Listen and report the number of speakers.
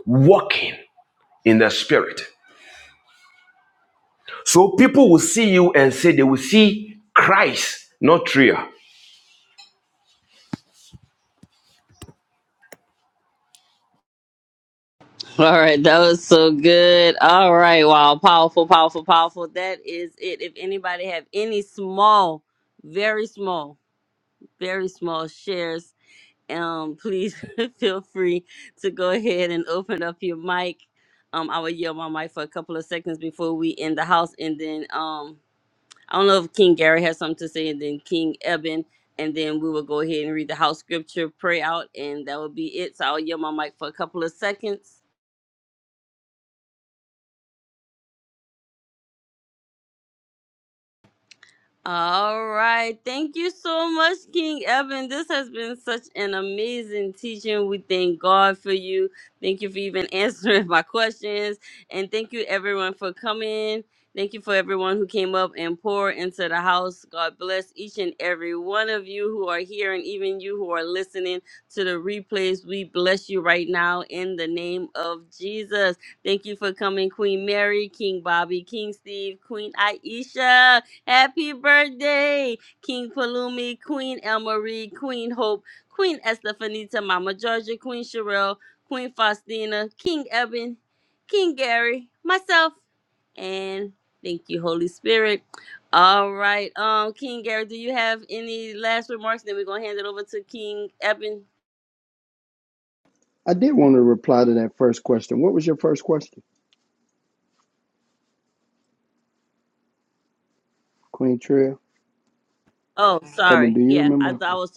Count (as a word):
three